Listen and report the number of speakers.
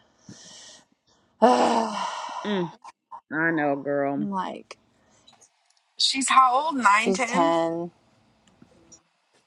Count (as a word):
three